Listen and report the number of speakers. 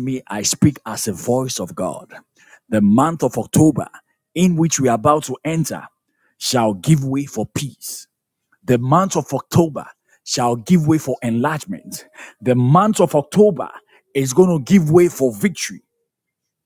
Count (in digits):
1